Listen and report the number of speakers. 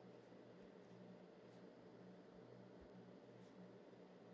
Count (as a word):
zero